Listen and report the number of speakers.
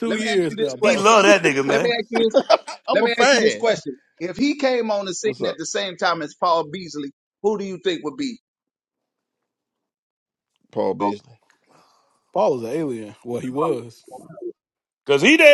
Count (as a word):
four